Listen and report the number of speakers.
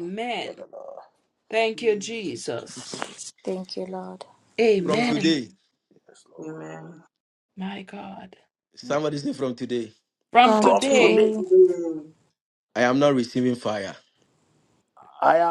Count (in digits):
5